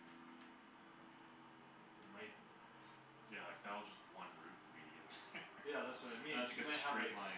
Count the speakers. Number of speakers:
2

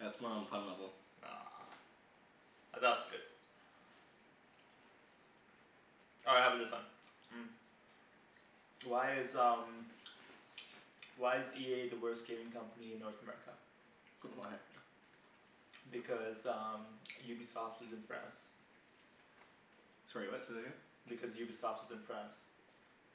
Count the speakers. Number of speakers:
2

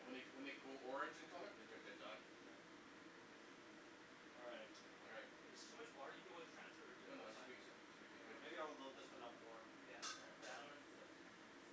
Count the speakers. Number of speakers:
3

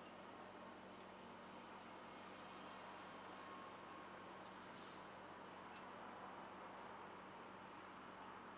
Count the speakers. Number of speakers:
0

